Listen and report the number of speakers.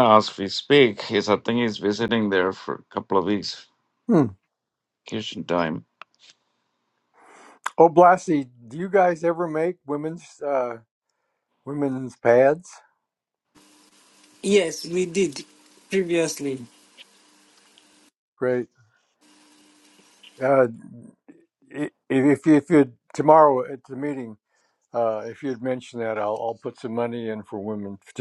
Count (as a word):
three